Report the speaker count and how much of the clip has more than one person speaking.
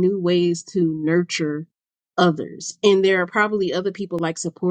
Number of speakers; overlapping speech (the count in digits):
1, no overlap